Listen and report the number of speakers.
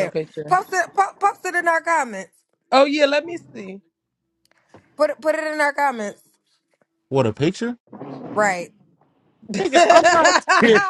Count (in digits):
3